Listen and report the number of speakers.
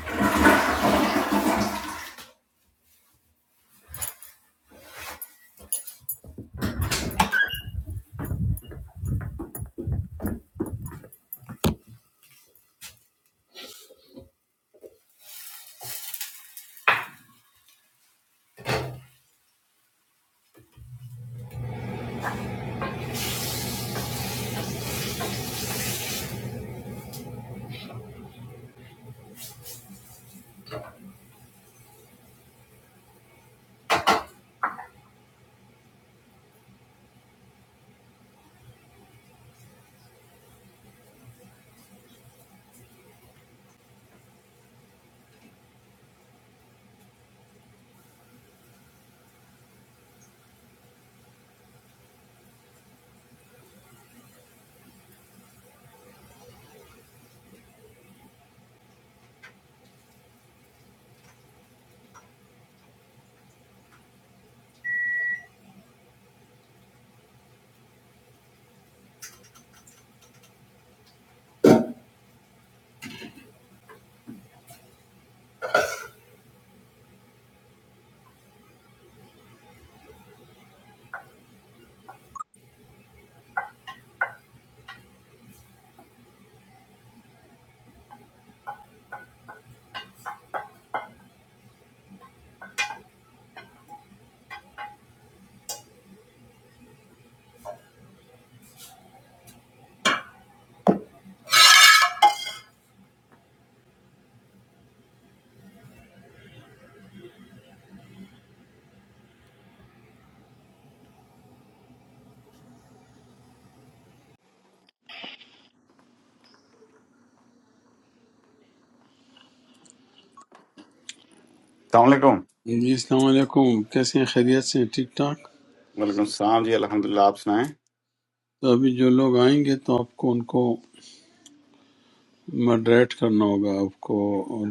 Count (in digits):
2